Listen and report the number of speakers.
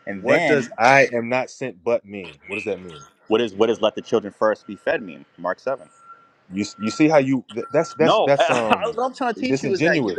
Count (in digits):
2